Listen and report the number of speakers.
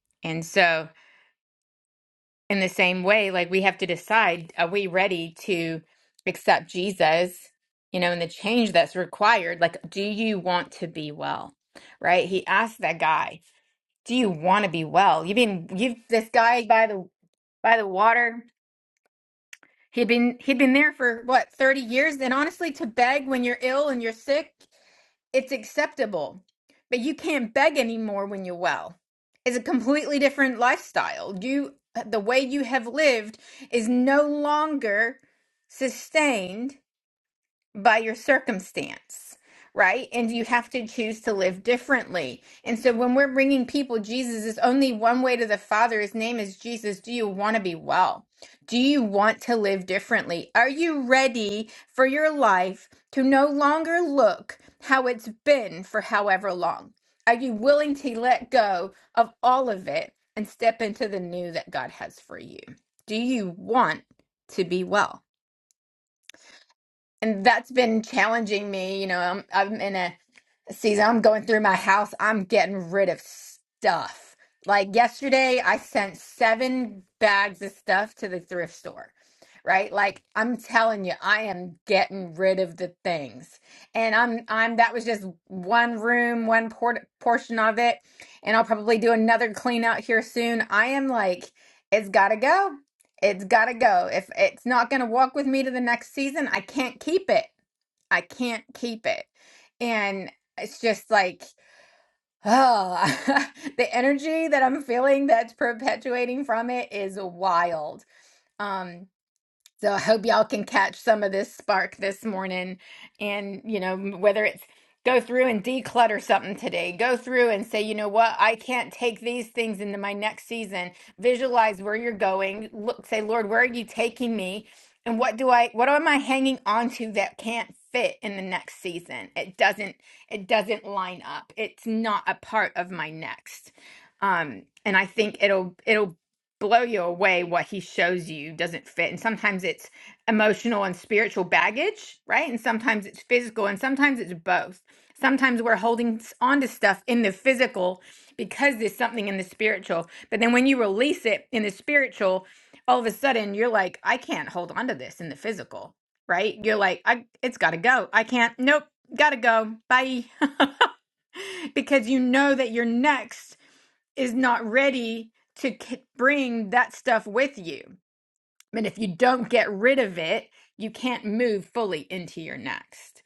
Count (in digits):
1